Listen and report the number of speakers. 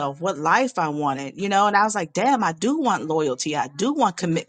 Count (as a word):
one